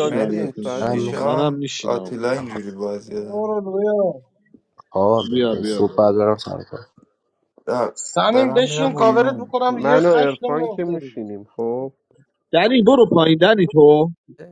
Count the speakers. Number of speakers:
five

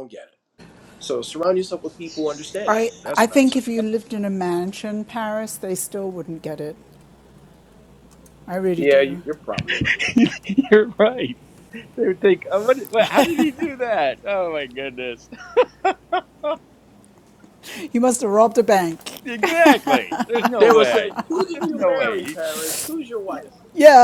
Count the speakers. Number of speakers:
three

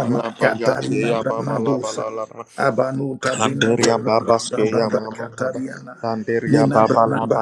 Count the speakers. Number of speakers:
two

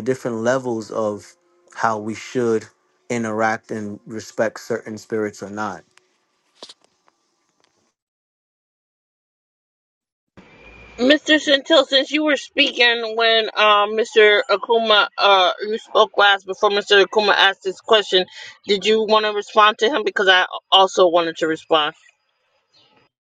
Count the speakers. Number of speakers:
two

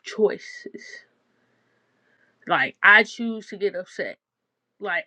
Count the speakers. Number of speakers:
one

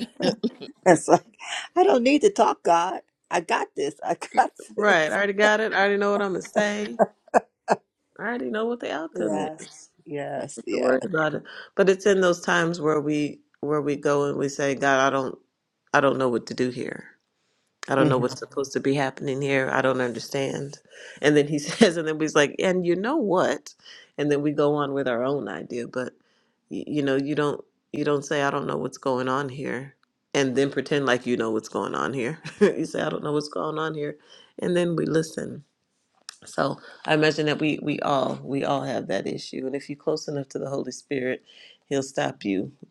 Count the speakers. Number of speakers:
two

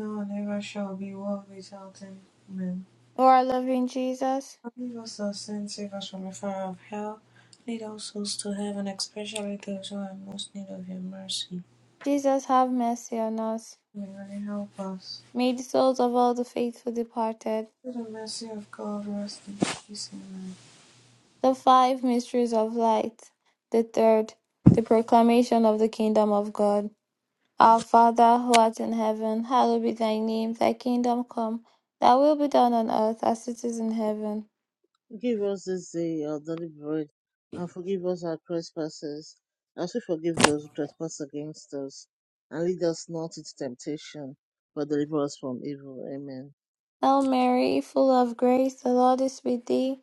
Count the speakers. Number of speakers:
three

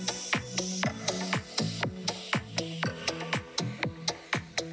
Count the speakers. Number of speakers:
zero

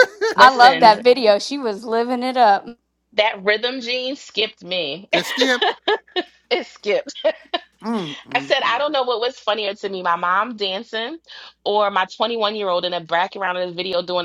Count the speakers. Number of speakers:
three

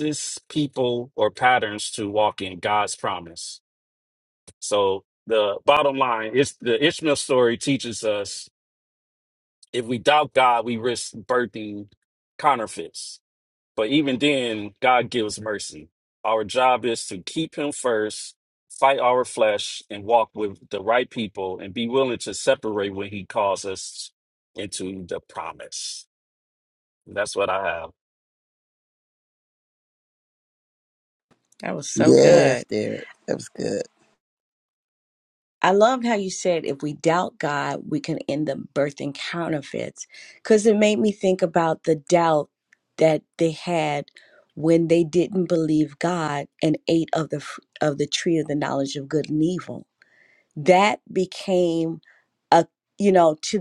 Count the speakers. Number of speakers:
three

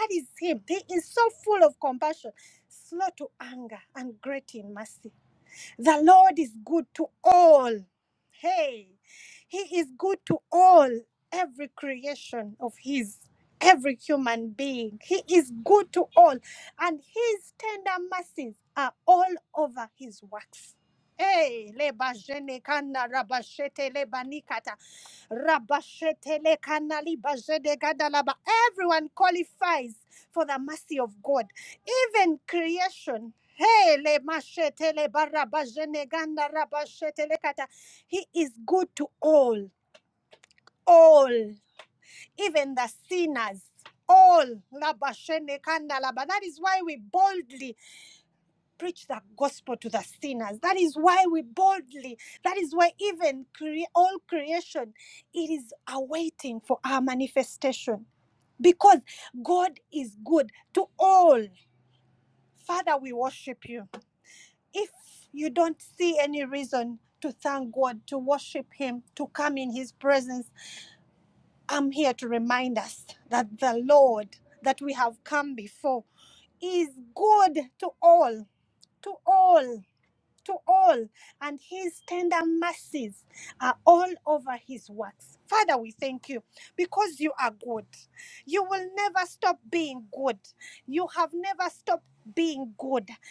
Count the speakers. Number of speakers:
one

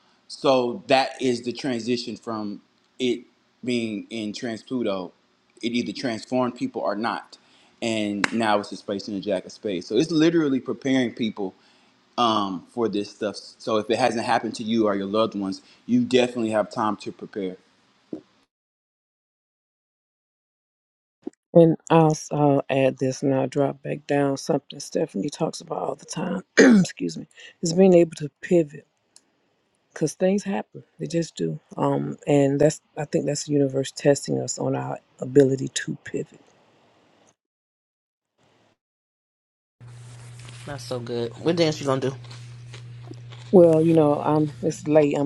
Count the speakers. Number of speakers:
three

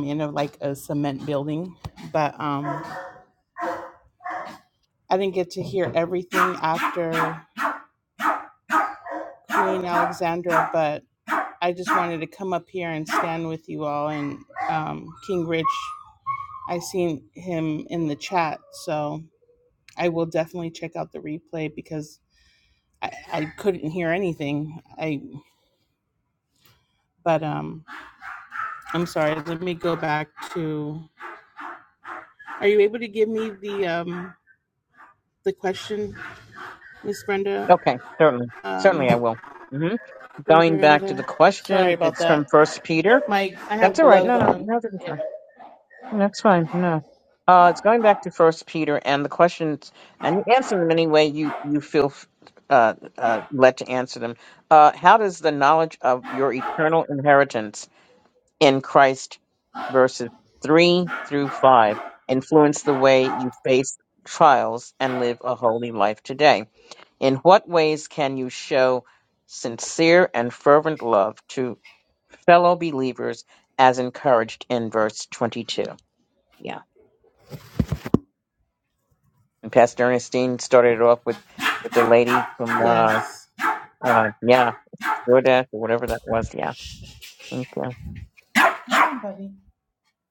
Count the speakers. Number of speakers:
two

